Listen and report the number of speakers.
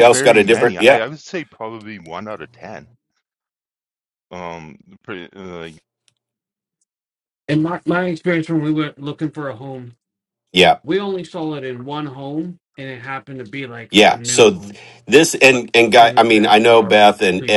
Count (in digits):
3